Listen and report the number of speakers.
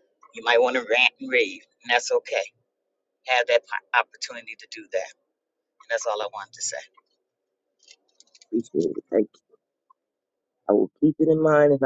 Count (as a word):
two